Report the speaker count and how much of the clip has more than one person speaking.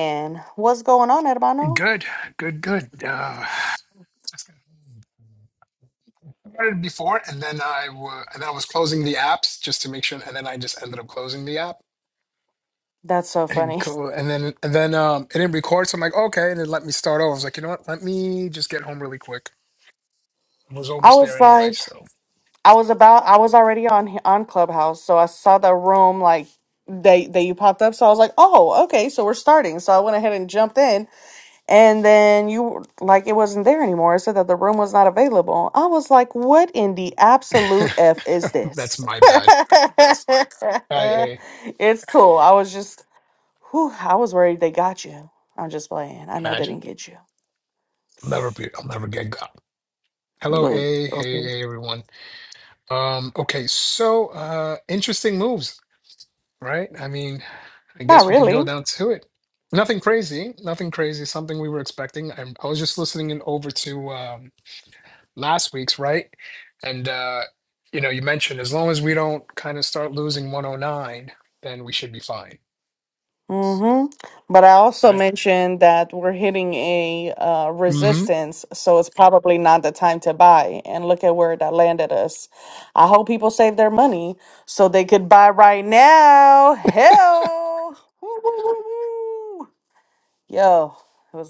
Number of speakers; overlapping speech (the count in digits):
2, about 5%